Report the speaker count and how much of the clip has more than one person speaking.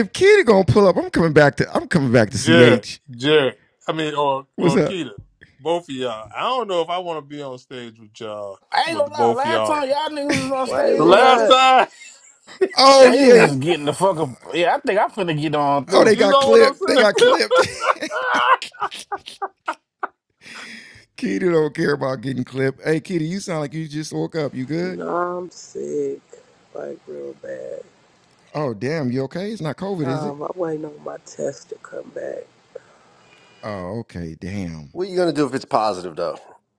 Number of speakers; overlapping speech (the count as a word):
five, about 13%